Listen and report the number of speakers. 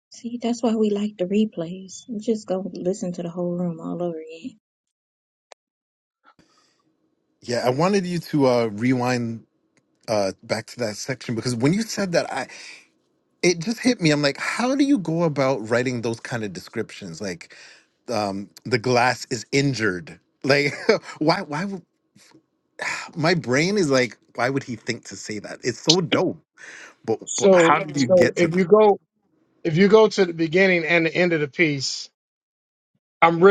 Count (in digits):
3